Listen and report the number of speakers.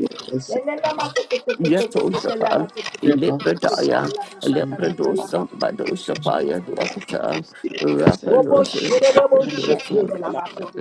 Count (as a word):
three